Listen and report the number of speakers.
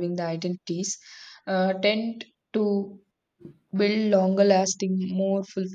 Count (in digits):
1